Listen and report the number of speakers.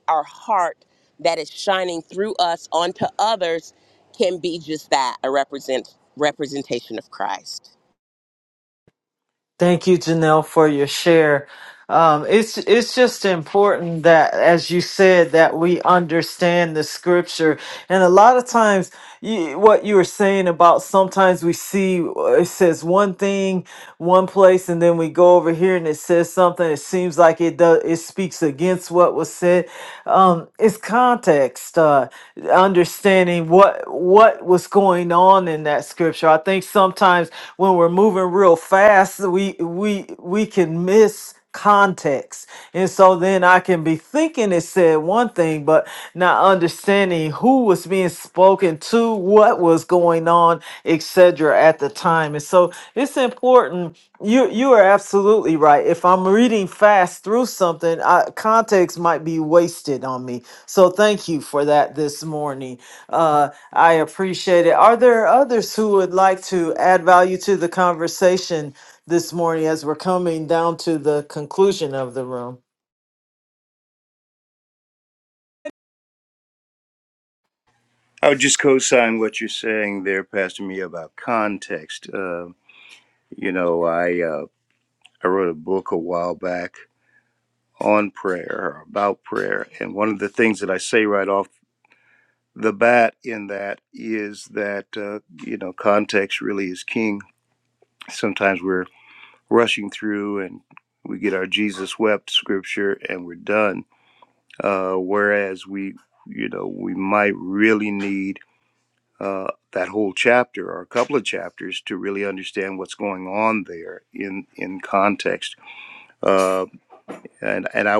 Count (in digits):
3